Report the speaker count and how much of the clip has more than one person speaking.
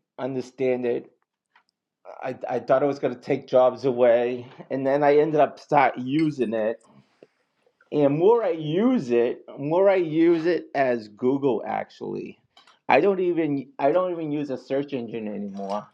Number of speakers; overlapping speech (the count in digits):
1, no overlap